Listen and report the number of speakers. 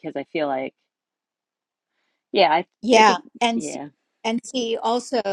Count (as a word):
two